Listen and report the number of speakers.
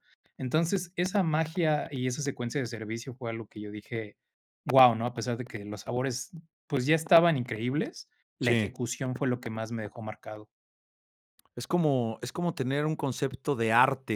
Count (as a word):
two